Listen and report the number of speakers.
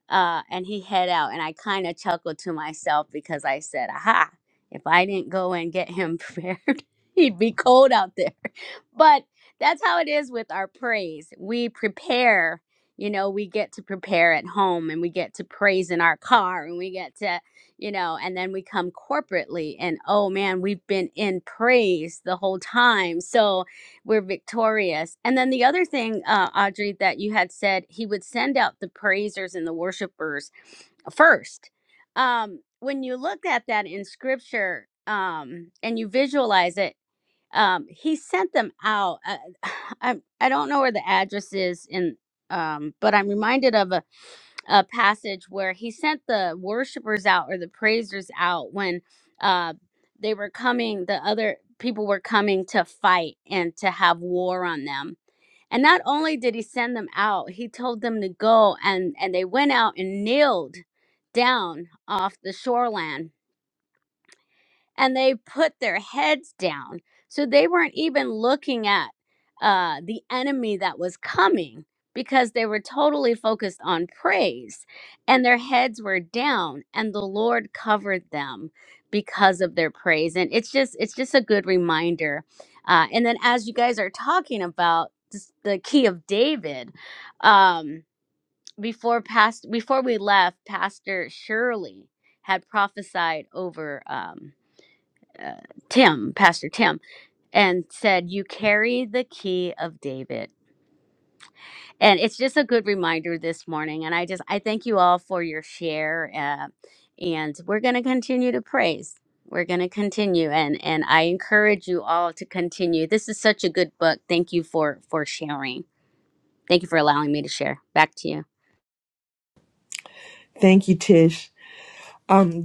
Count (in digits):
2